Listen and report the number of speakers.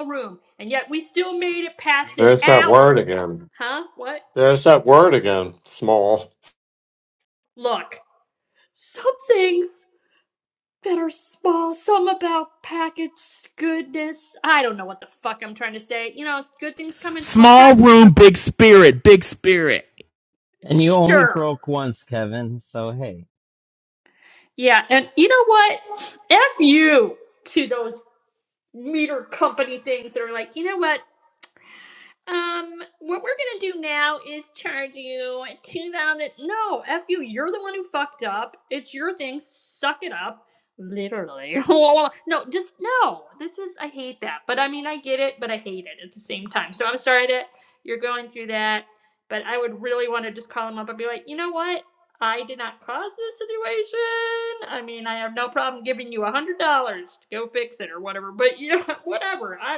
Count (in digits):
4